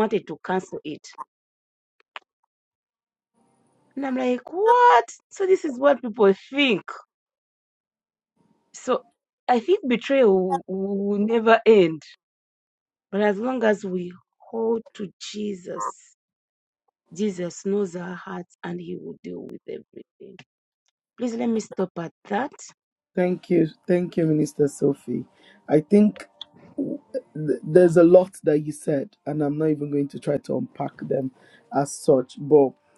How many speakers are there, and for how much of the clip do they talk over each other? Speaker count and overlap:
two, no overlap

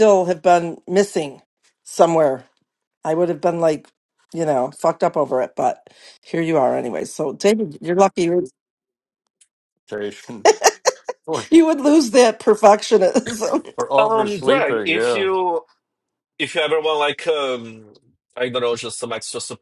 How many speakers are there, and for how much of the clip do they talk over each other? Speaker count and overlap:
three, about 5%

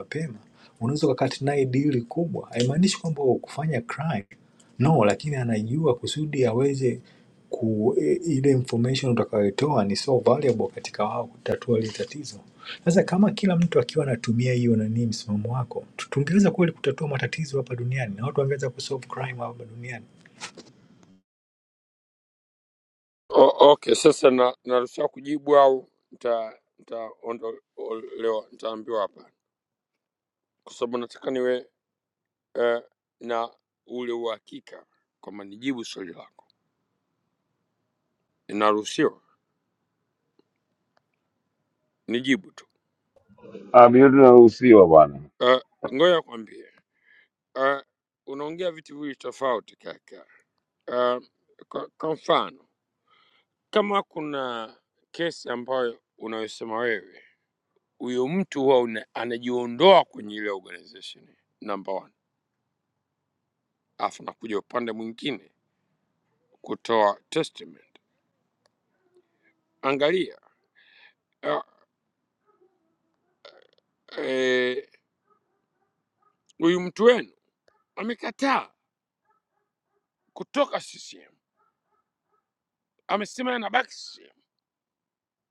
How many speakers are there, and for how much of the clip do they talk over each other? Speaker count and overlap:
three, no overlap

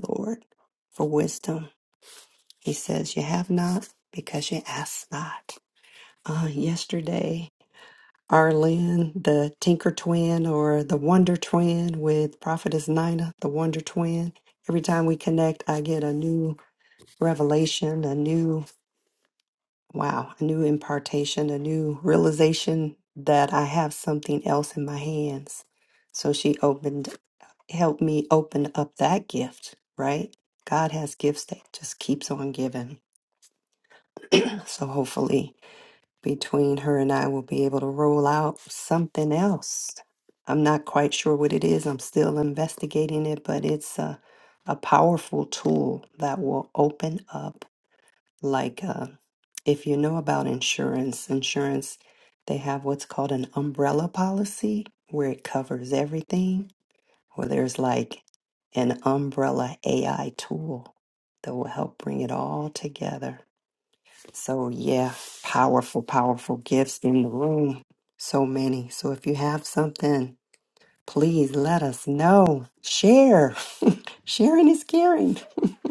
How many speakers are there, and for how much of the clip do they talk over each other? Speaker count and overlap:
one, no overlap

